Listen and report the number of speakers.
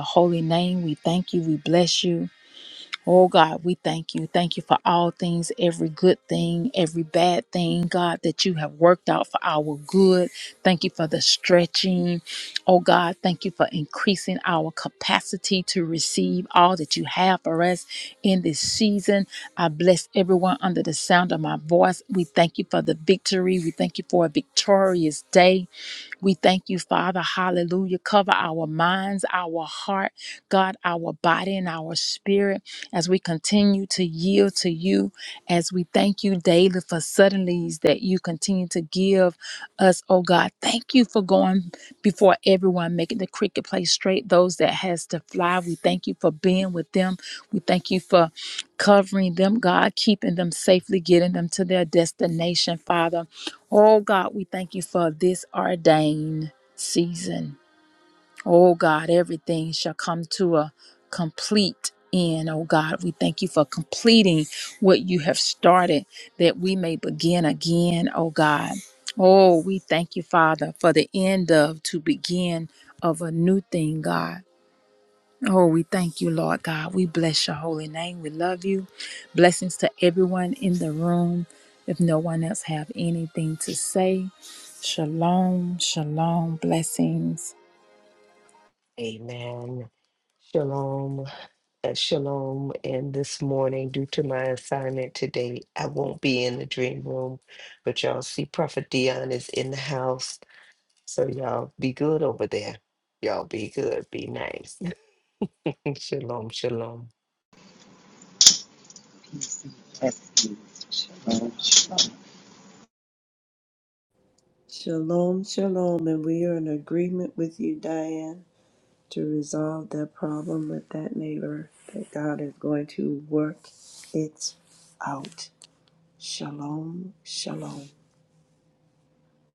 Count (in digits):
4